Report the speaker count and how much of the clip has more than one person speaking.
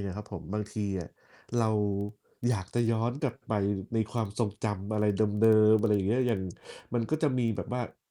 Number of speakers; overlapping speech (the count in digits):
1, no overlap